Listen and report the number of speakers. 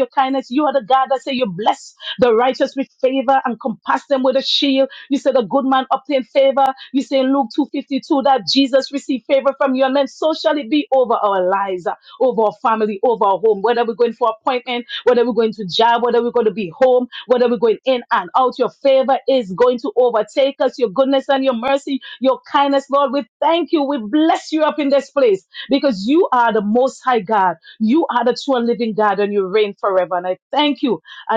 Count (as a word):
one